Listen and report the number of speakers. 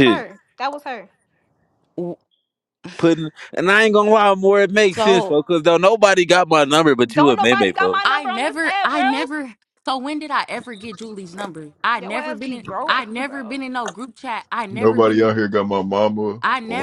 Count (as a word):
four